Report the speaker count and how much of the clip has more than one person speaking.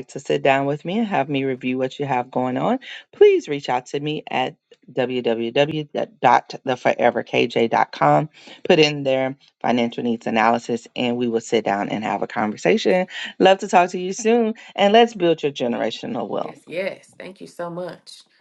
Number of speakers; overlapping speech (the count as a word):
two, about 1%